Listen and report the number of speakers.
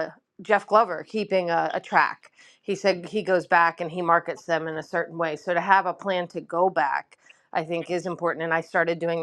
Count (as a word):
one